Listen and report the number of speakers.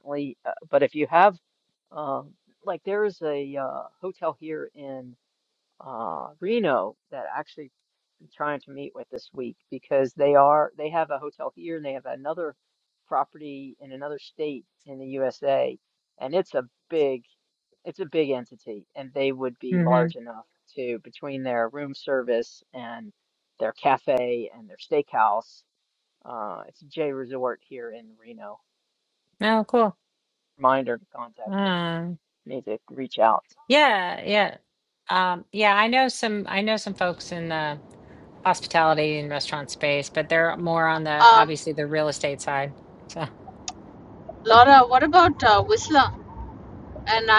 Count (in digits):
3